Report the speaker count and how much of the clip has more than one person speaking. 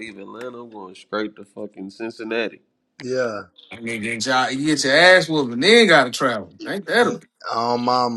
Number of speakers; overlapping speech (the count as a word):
three, no overlap